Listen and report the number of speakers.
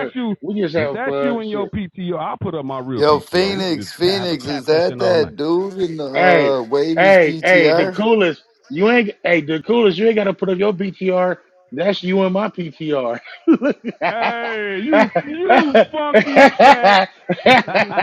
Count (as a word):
three